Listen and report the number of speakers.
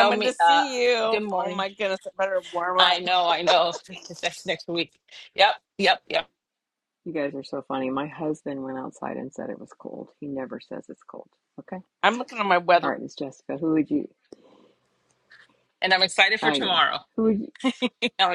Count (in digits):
3